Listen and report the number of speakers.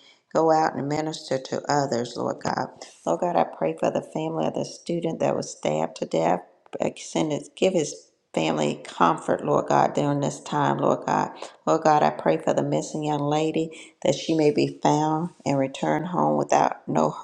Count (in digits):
1